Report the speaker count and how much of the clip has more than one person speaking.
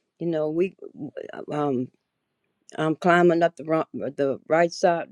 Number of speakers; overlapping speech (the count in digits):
1, no overlap